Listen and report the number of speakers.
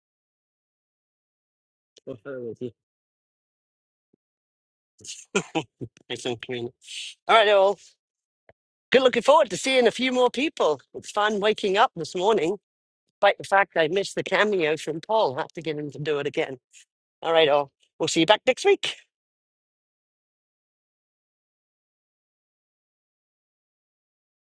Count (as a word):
one